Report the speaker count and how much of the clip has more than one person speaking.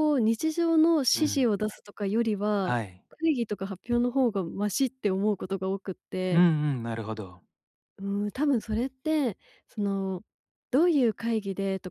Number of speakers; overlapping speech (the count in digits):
2, about 4%